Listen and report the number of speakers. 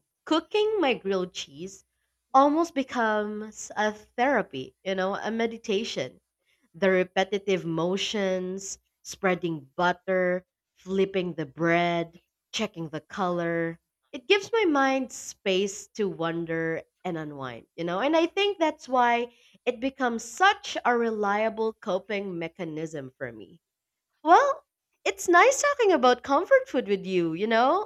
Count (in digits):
1